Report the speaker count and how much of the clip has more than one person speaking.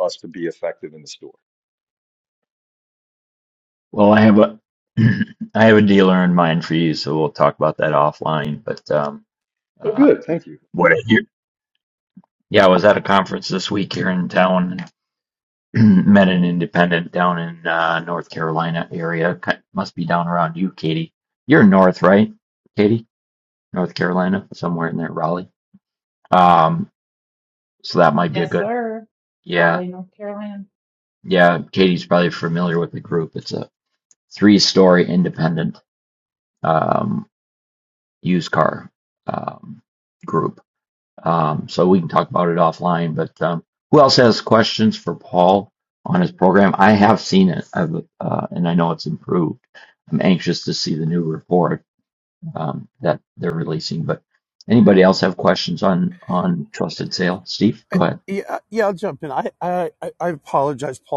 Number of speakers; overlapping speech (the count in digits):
4, about 2%